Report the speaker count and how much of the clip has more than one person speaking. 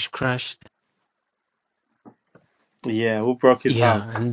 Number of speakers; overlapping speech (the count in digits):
2, about 8%